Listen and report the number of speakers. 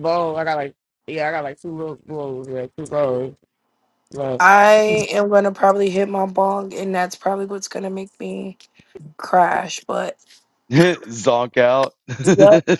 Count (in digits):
3